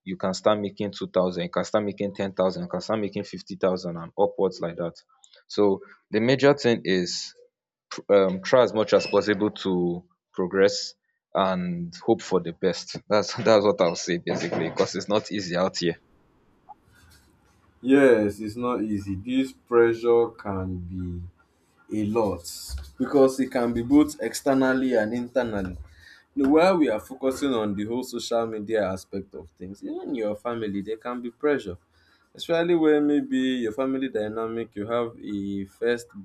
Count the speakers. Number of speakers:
2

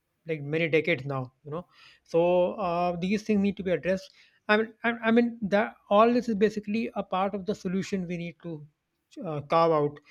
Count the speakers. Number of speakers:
1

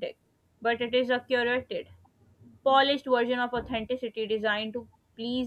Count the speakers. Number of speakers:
1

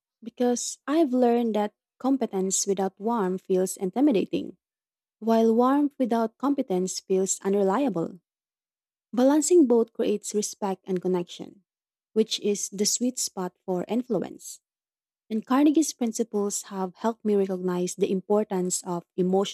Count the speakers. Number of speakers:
1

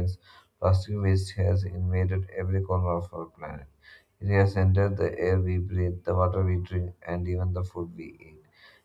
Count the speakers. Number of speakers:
1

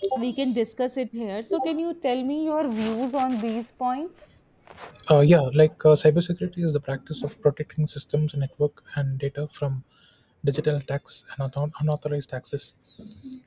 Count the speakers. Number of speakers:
2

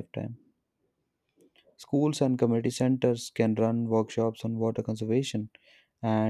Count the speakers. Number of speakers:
1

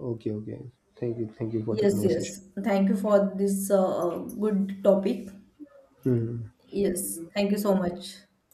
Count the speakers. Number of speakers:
2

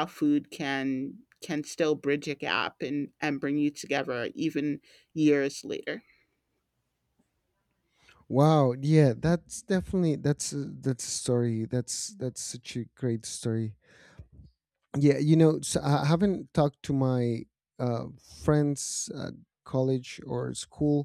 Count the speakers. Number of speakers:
2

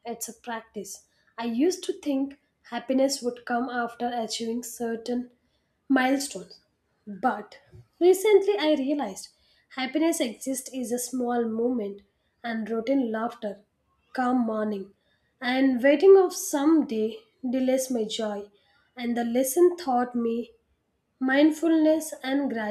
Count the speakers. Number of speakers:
1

